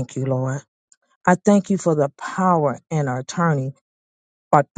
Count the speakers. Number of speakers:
1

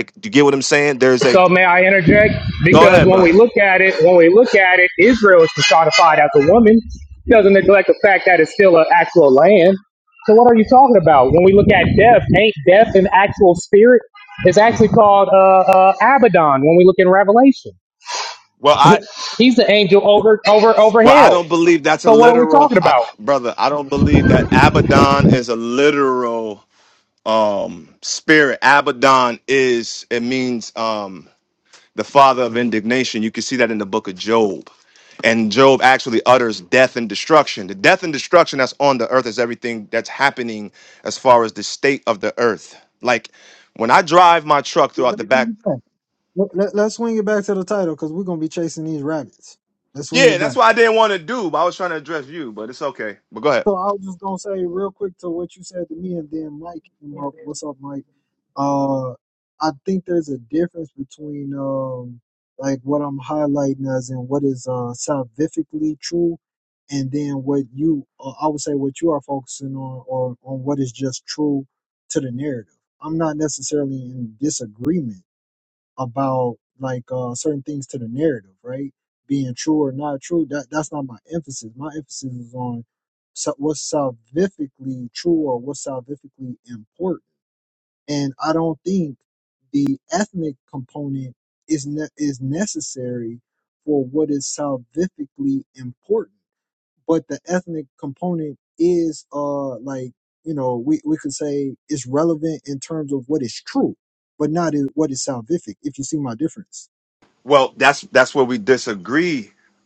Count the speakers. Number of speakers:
3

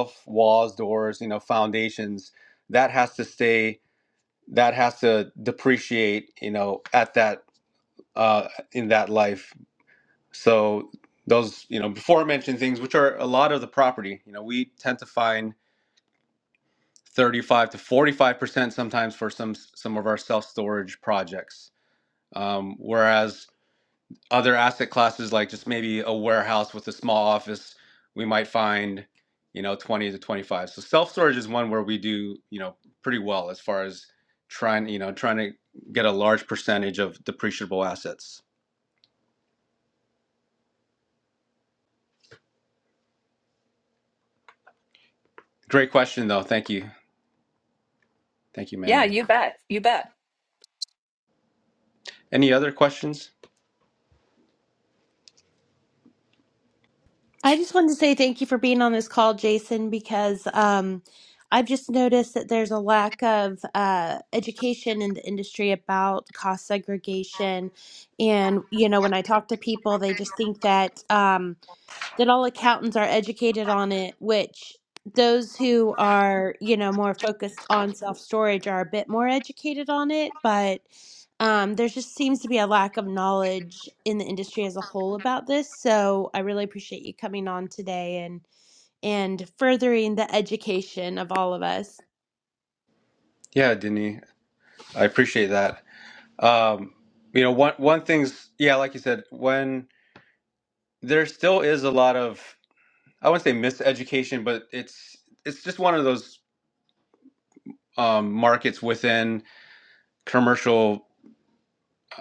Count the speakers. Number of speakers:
3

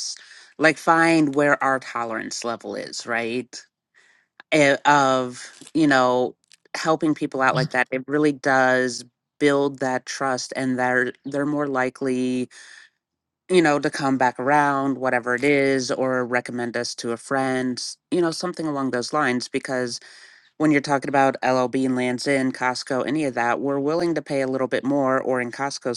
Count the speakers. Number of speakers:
1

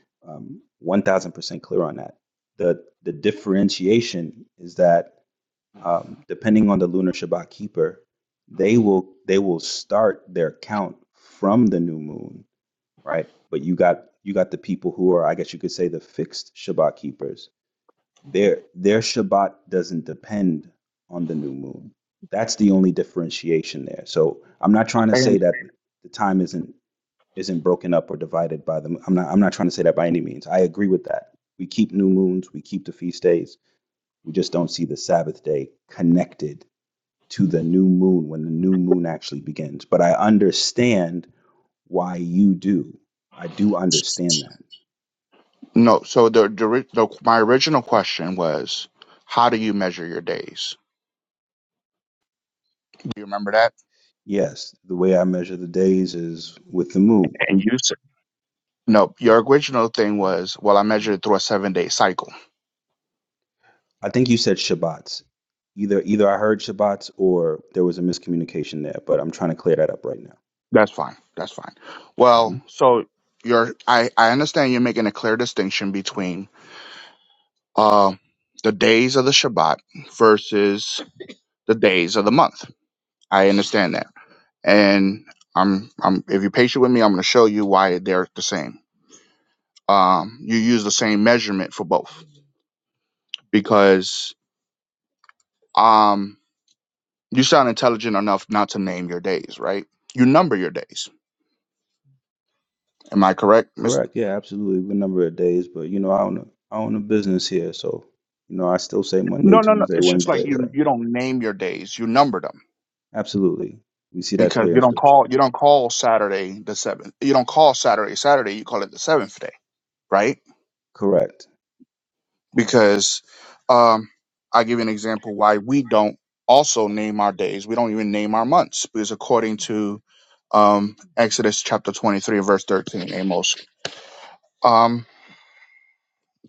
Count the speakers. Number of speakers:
2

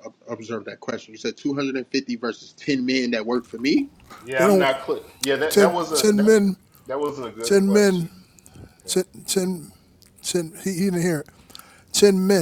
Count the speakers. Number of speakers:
3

